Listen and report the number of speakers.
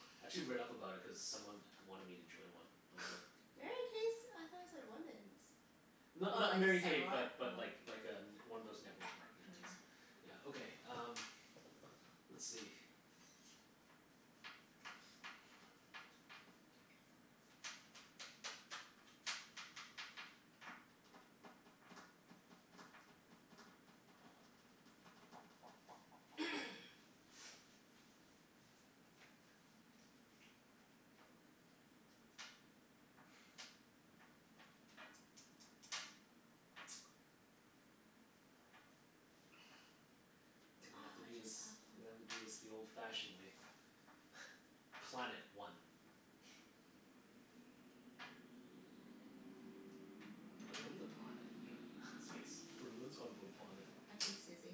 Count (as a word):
three